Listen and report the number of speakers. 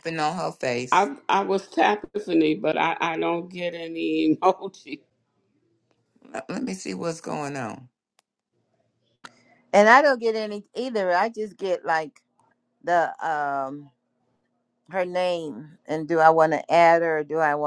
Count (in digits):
3